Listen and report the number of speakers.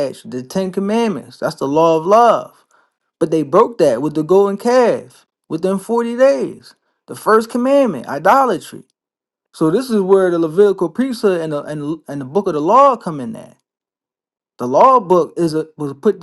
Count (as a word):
one